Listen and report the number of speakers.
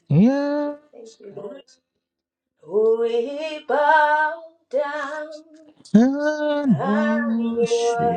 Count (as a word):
two